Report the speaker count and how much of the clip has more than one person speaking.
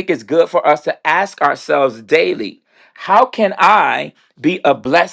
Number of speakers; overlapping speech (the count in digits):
1, no overlap